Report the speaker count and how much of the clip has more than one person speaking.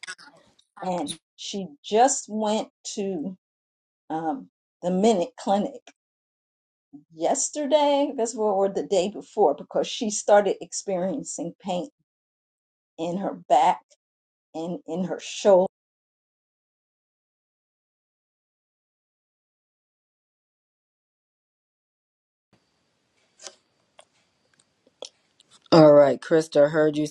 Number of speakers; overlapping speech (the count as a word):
two, no overlap